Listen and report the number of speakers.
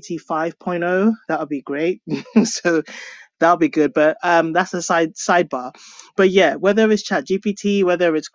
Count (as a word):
one